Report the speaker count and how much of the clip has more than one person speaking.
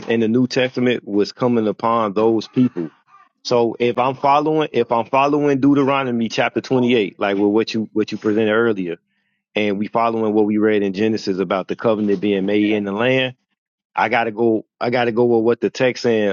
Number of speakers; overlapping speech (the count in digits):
1, no overlap